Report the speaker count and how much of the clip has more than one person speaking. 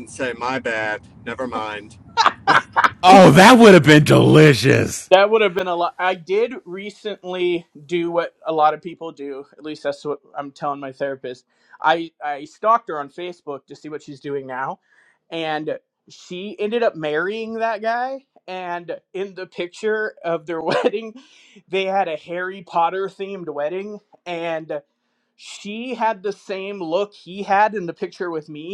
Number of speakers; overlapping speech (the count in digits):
3, no overlap